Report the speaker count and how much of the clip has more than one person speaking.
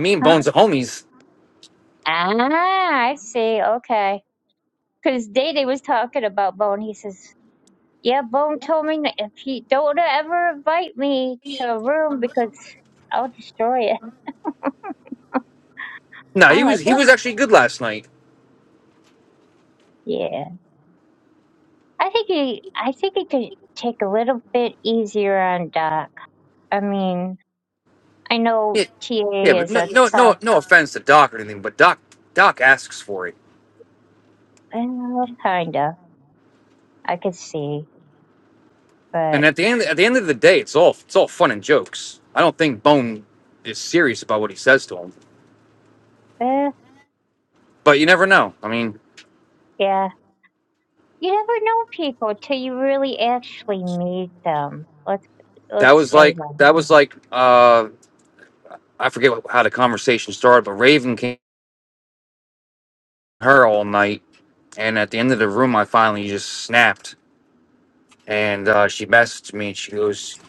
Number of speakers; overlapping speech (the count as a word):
two, about 4%